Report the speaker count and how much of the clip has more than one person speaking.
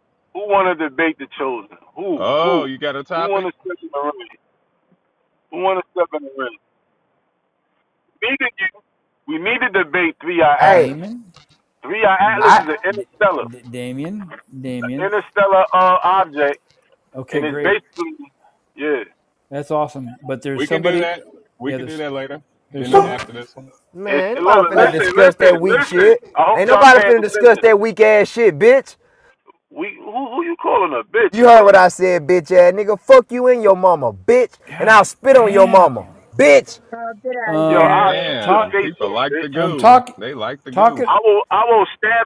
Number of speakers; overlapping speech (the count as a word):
five, about 28%